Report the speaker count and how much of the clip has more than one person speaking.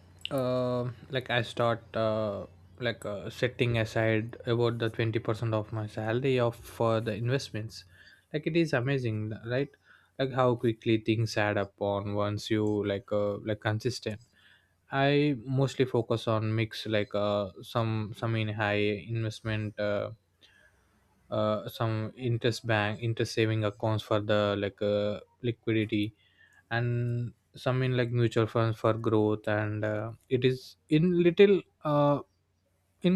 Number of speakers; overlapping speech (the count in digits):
1, no overlap